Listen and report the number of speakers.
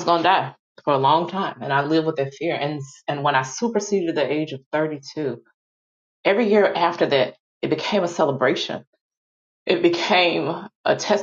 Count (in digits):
1